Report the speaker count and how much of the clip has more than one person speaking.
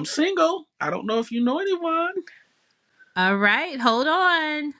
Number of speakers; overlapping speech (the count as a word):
two, no overlap